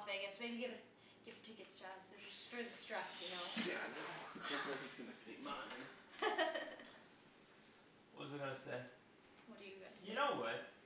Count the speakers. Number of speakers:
three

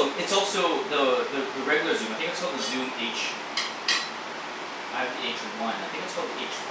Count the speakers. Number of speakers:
one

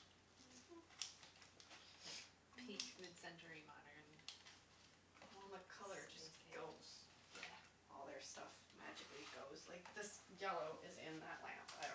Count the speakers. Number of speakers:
two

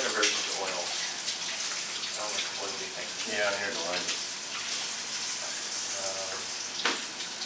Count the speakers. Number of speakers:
two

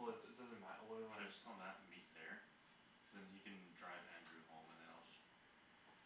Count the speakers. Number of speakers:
two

